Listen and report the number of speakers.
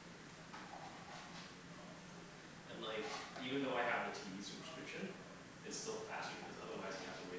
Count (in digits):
1